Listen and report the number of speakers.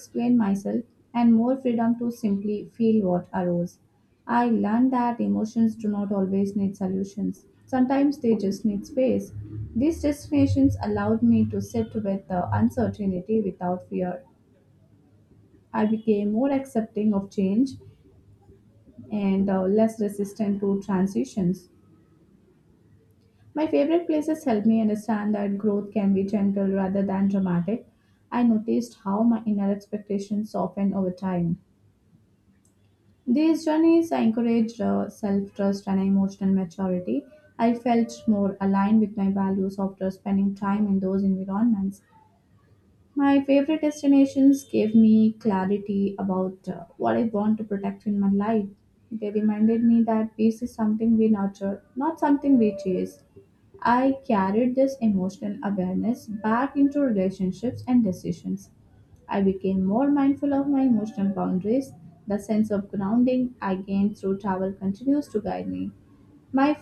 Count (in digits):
1